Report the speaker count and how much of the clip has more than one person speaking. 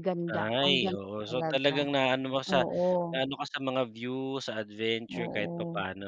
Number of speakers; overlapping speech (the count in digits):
2, about 35%